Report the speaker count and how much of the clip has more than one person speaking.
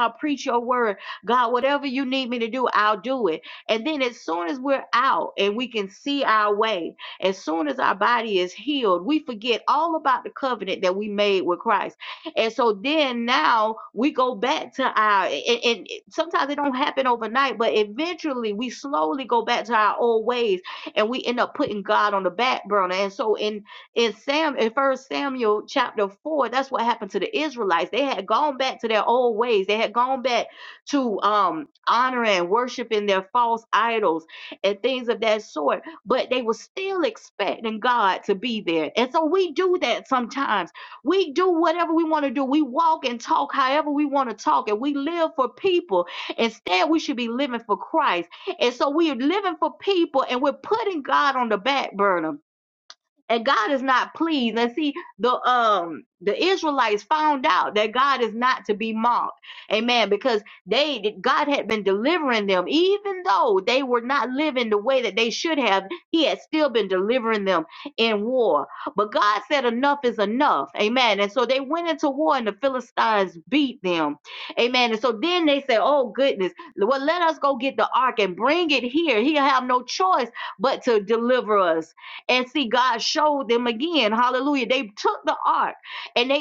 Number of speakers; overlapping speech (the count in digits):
1, no overlap